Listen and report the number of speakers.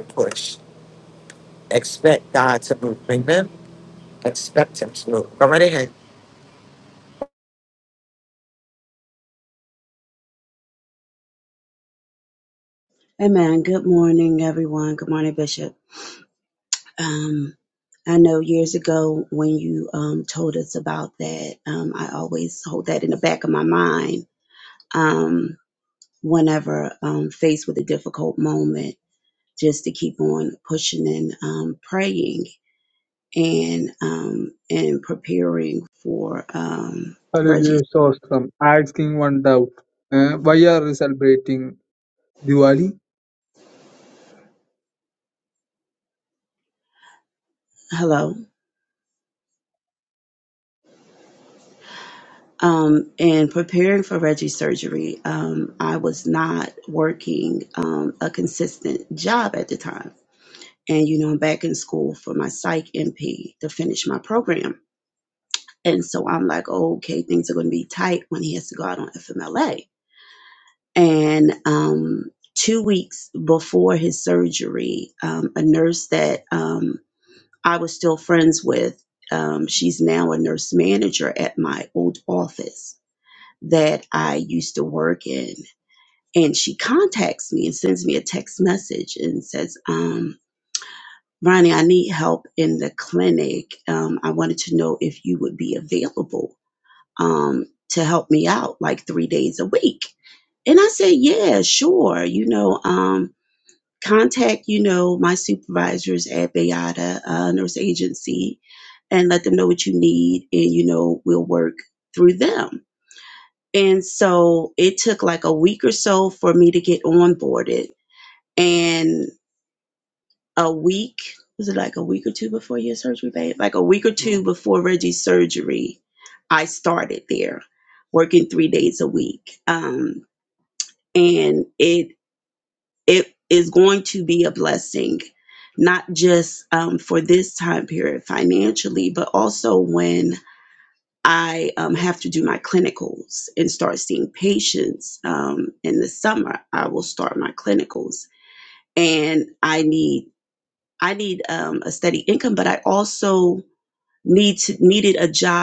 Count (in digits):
3